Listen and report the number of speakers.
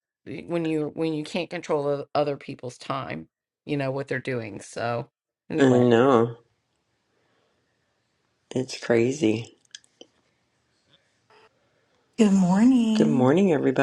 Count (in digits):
3